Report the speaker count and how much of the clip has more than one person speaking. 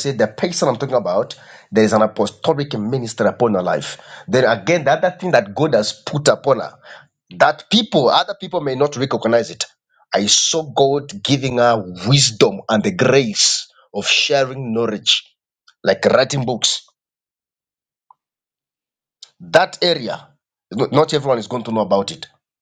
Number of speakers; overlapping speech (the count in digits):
1, no overlap